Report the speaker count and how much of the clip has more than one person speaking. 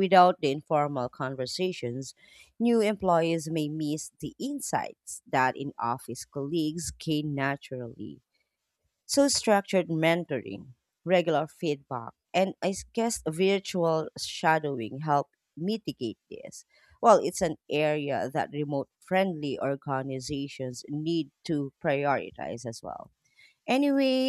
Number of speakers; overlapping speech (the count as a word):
one, no overlap